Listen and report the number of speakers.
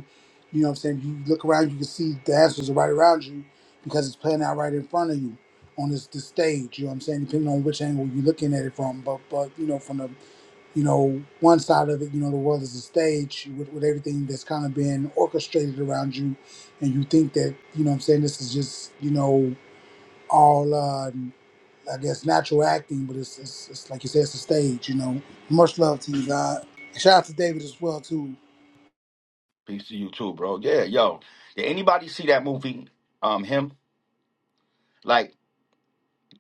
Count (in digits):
2